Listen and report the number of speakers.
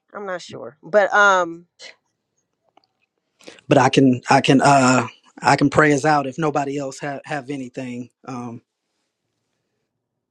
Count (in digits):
2